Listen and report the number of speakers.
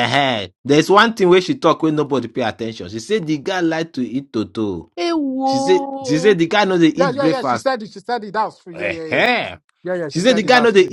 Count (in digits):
3